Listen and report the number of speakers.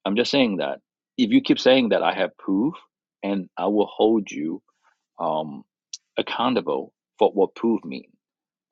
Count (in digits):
1